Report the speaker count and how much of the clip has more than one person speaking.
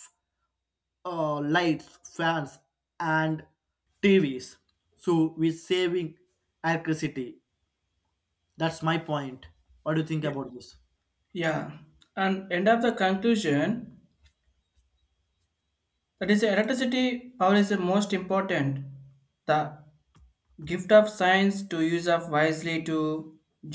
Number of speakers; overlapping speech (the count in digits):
2, about 1%